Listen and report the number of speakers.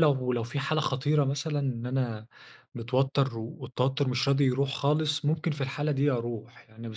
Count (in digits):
1